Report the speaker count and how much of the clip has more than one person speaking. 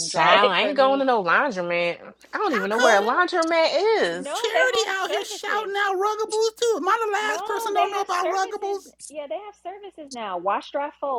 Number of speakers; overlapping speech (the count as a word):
three, about 42%